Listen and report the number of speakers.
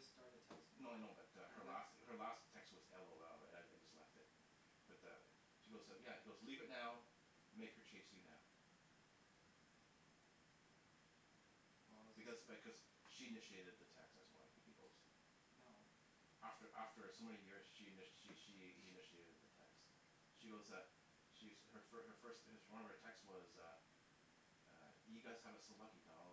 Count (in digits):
2